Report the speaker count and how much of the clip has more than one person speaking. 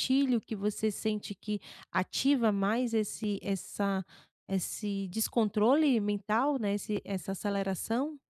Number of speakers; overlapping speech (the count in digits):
1, no overlap